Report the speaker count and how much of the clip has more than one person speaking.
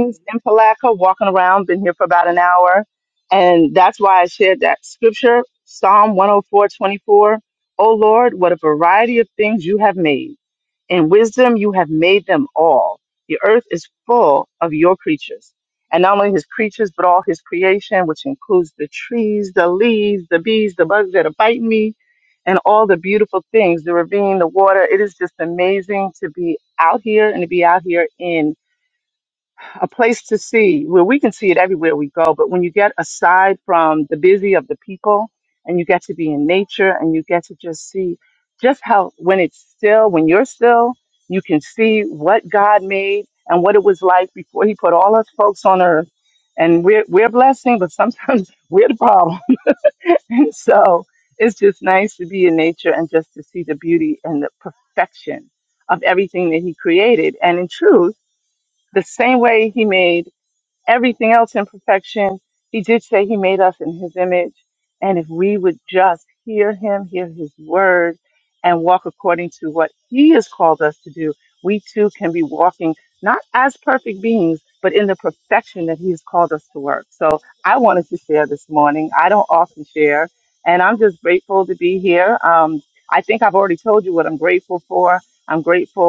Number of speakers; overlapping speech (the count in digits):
1, no overlap